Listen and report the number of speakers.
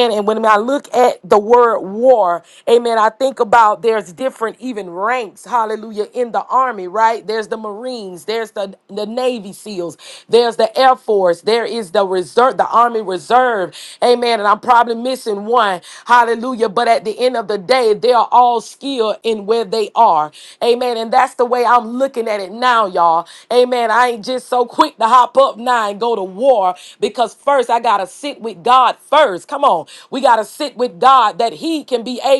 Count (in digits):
1